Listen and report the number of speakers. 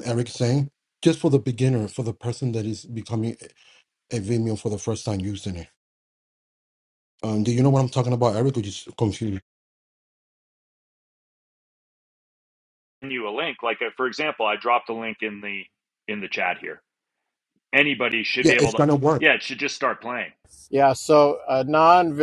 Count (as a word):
three